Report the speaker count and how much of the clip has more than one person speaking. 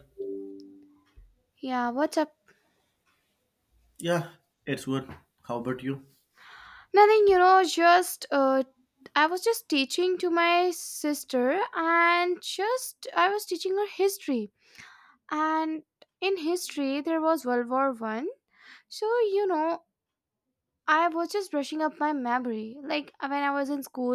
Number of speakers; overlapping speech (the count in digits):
2, no overlap